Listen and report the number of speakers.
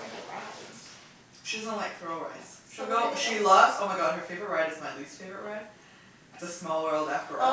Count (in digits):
2